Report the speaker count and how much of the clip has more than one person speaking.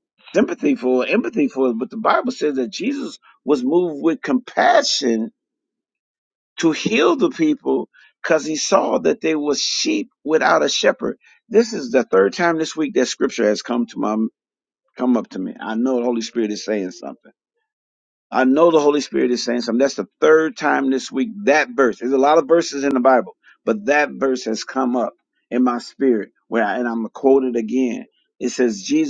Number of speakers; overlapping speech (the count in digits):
1, no overlap